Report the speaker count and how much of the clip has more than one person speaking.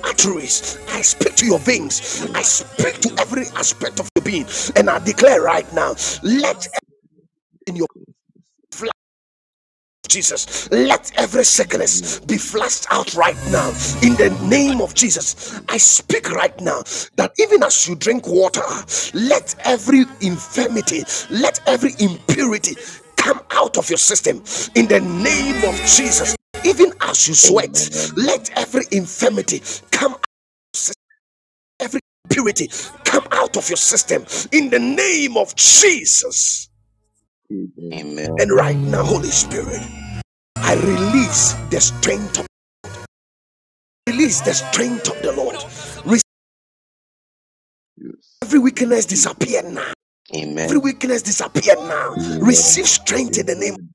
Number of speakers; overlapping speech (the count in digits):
3, about 11%